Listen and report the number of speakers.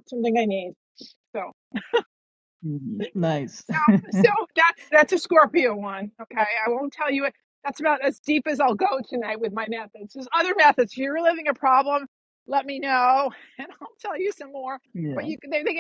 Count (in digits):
2